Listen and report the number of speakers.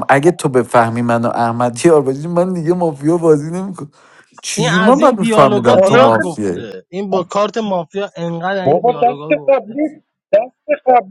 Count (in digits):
3